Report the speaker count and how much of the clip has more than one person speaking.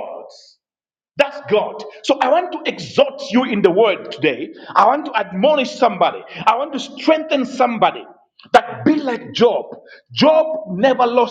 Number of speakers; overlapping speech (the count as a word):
one, no overlap